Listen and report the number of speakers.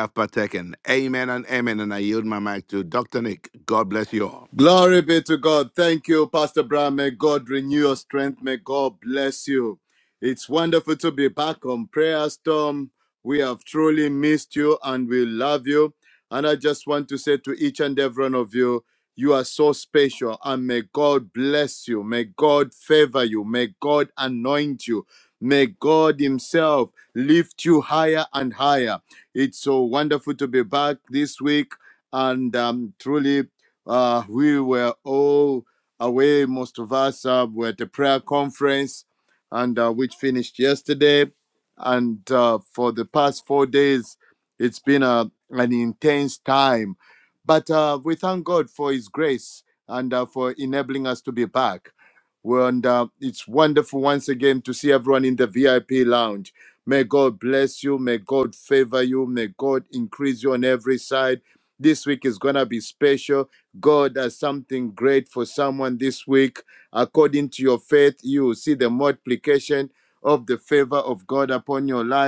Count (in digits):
2